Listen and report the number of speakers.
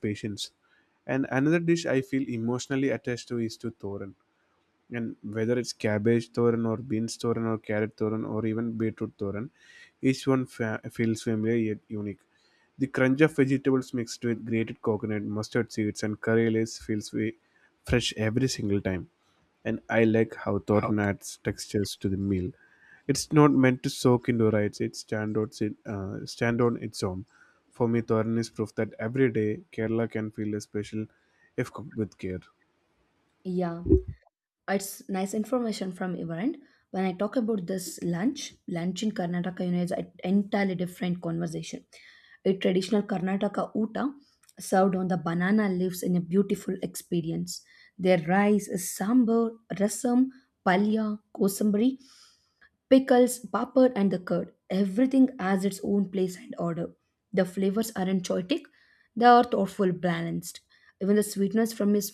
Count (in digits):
2